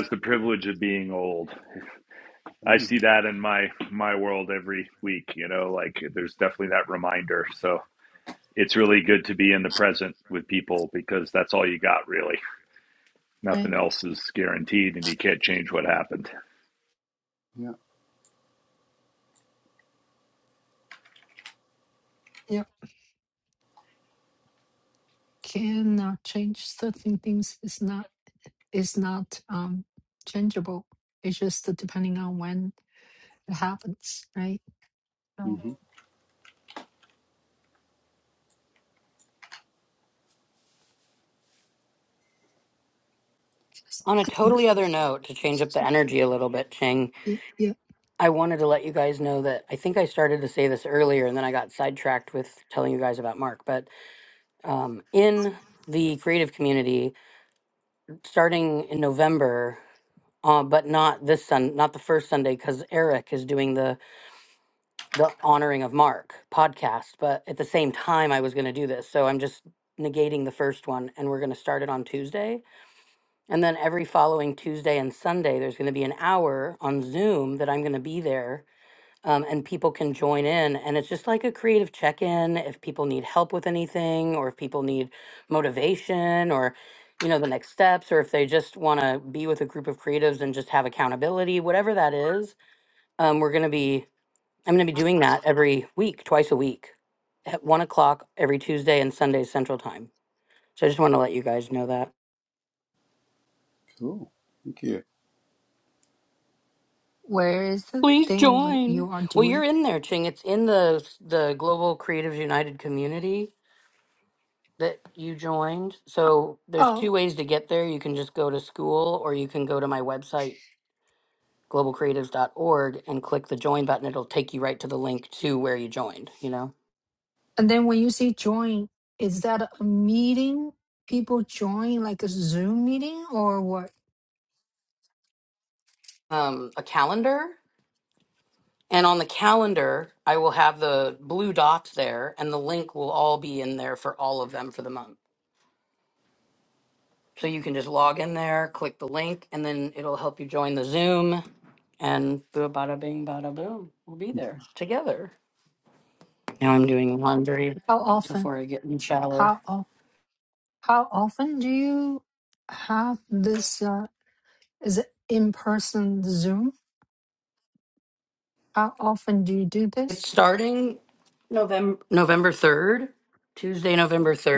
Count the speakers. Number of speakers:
4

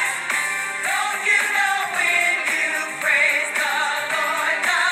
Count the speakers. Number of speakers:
0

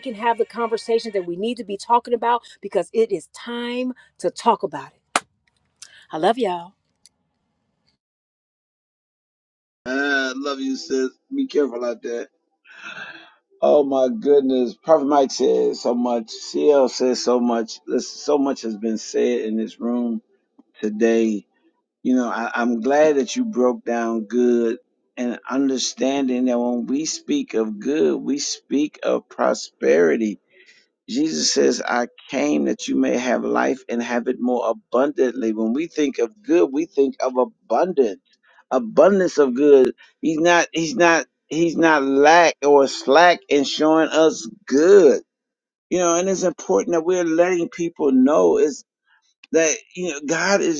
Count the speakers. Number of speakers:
2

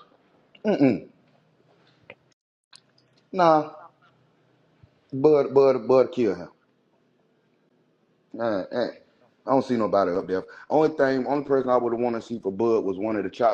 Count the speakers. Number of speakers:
1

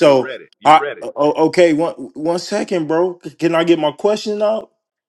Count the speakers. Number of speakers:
1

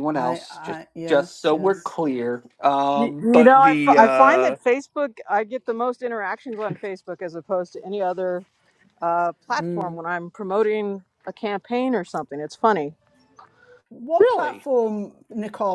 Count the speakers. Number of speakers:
3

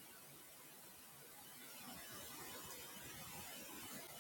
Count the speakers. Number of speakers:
0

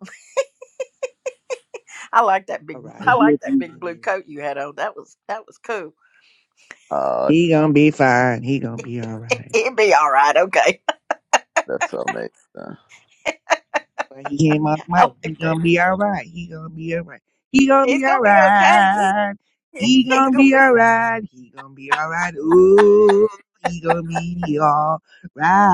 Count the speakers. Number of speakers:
3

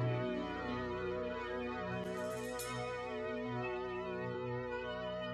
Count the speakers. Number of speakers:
0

